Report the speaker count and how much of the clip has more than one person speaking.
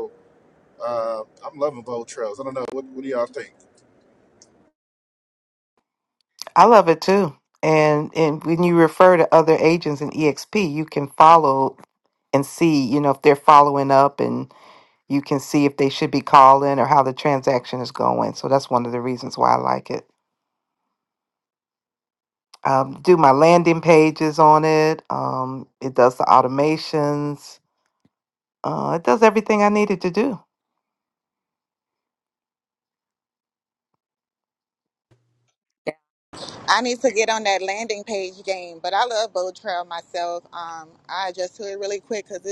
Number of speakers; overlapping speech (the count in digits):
3, no overlap